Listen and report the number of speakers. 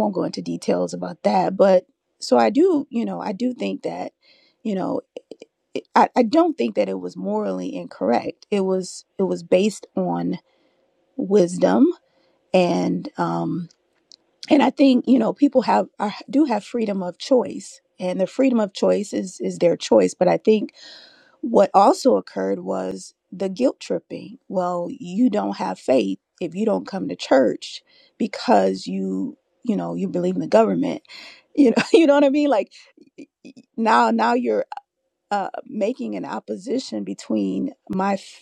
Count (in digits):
1